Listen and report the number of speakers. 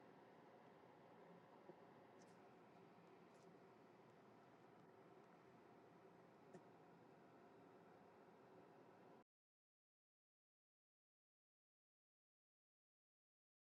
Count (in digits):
0